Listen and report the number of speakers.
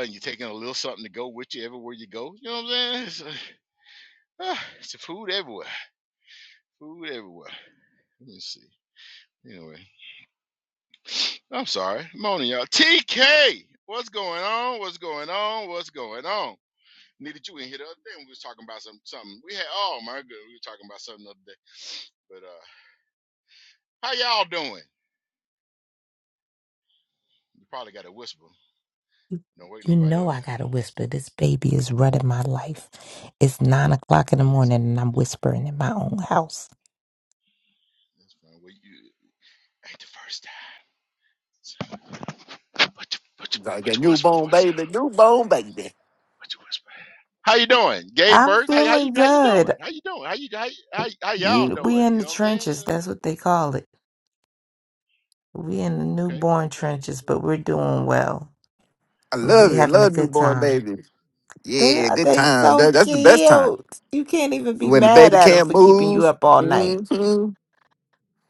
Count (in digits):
3